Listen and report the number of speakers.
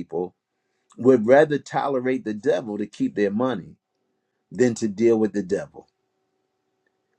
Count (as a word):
one